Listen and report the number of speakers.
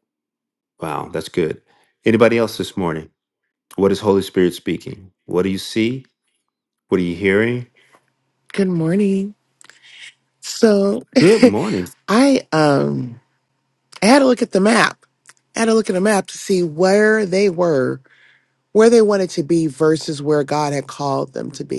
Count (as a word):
two